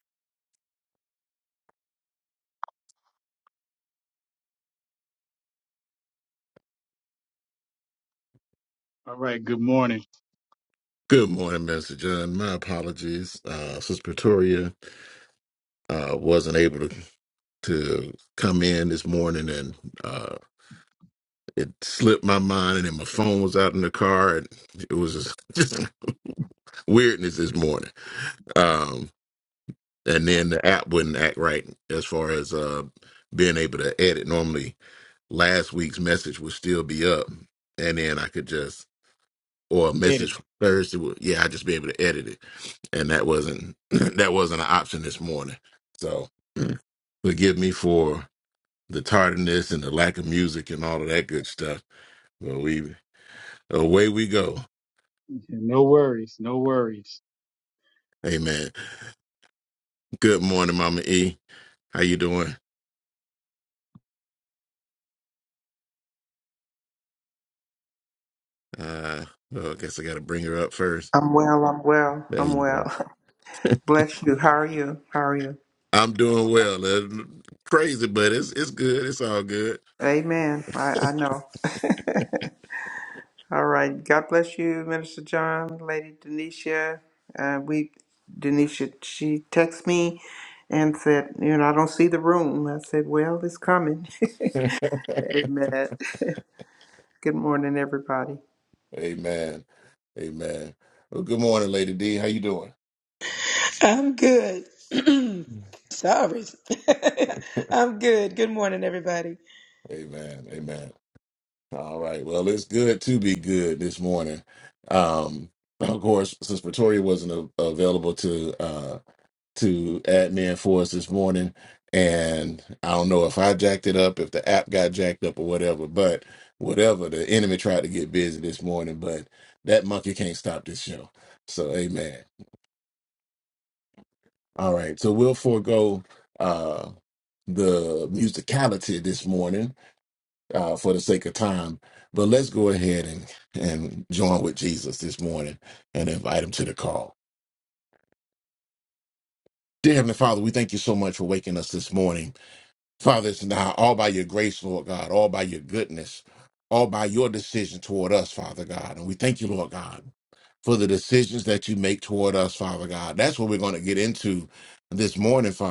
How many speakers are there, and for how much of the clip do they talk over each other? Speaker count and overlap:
4, under 1%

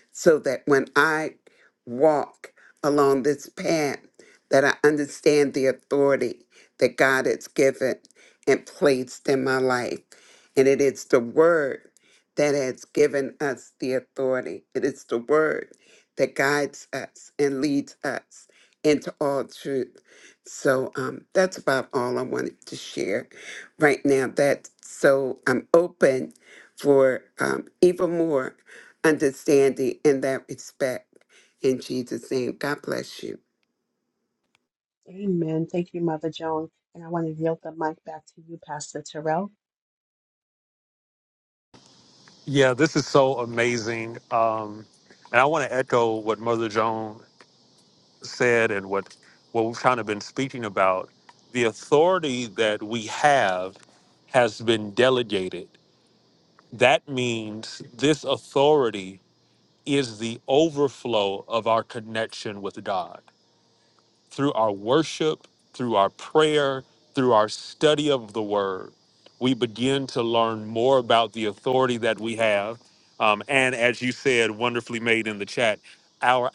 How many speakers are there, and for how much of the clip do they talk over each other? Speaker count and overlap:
3, no overlap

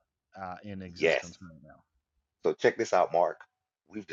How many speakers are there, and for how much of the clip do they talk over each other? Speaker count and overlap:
2, about 6%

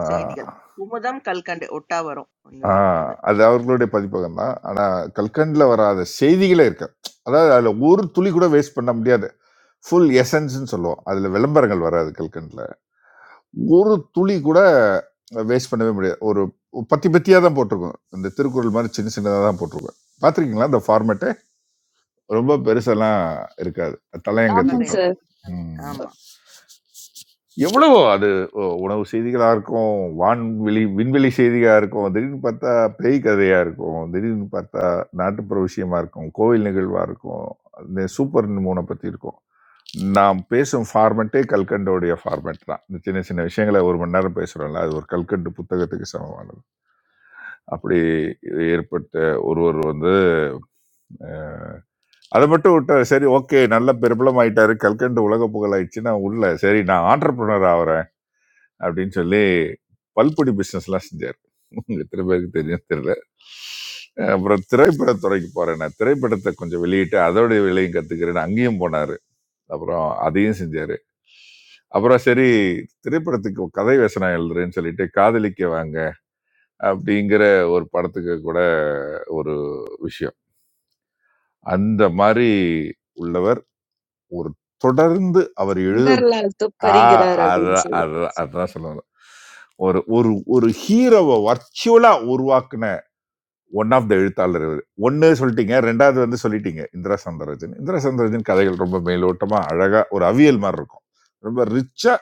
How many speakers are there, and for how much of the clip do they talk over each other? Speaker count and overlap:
3, about 3%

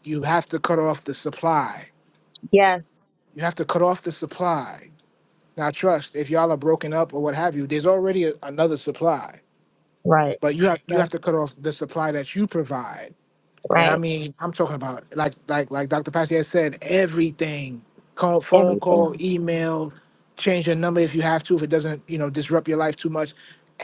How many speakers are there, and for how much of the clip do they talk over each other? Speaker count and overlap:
2, about 4%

